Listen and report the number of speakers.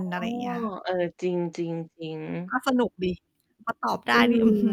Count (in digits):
2